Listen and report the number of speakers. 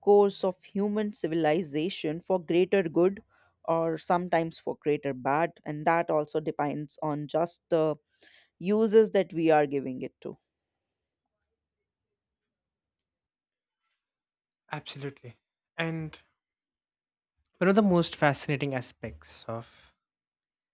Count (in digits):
2